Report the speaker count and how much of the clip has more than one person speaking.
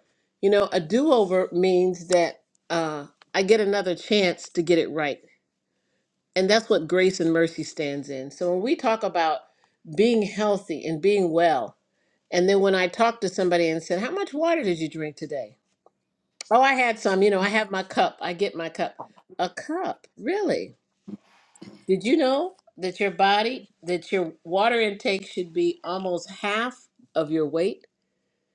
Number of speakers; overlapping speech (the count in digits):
1, no overlap